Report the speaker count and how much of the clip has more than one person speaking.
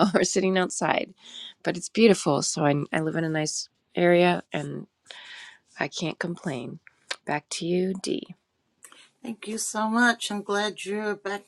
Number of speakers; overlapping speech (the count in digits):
2, no overlap